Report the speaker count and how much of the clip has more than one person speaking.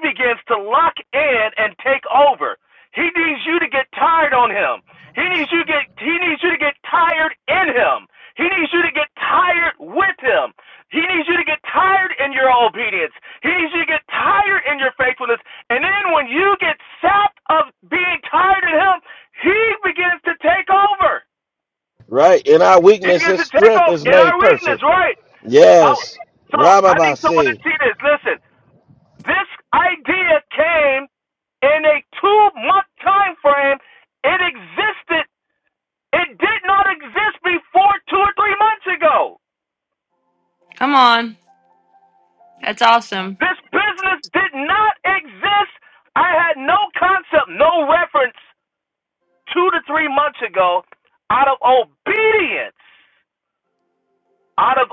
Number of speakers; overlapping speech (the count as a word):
three, about 5%